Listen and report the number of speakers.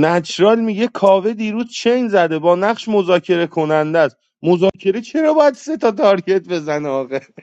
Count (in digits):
1